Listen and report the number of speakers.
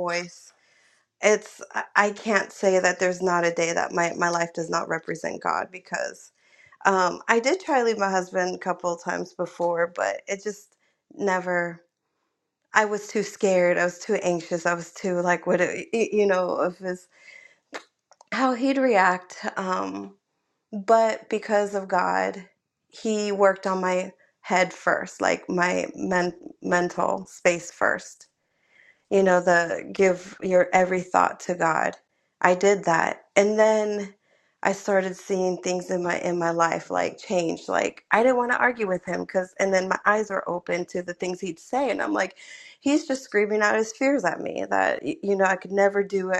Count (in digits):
1